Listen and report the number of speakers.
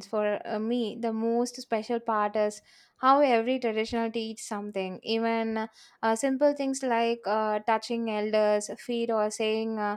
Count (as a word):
one